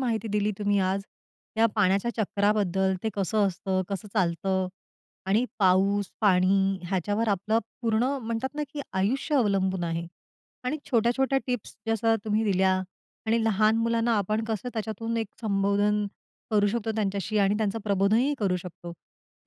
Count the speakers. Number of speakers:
one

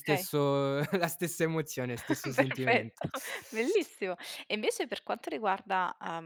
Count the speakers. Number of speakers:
two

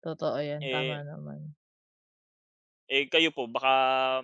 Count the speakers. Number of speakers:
two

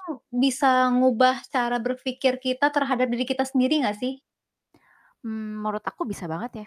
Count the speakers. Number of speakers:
two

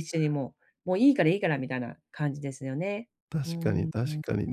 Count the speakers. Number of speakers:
two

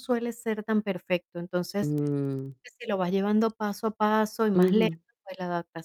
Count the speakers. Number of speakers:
two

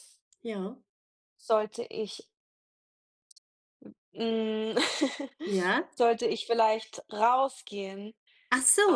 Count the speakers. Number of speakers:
two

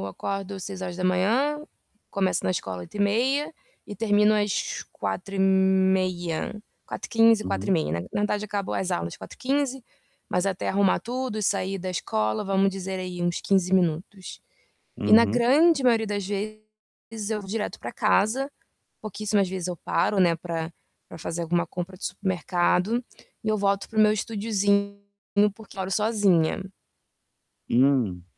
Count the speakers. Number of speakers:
two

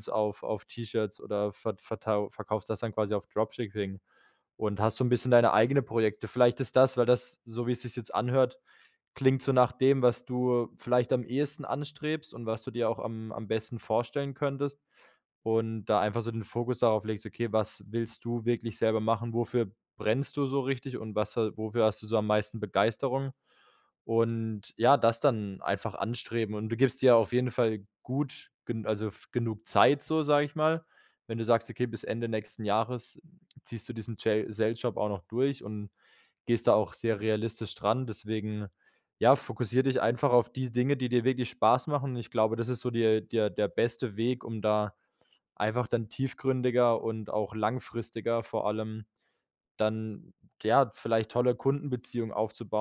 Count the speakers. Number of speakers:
one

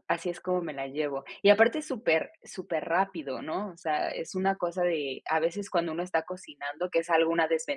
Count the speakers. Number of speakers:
one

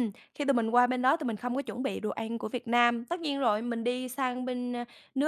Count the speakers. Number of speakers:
one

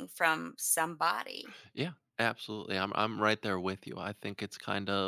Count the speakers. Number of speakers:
two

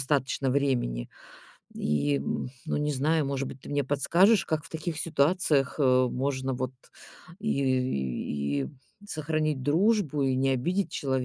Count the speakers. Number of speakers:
one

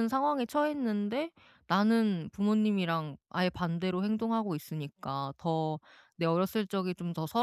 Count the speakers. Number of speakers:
one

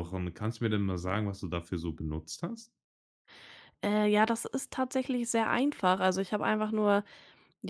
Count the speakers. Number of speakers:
two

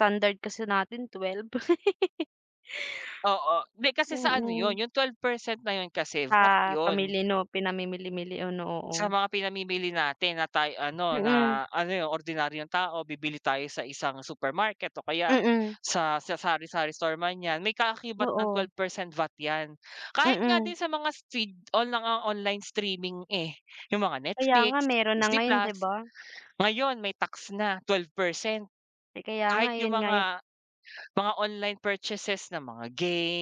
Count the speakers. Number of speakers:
two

